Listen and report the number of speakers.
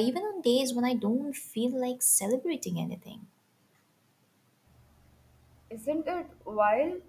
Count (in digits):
2